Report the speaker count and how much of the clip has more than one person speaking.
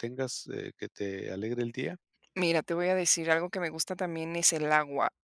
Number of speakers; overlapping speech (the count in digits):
2, no overlap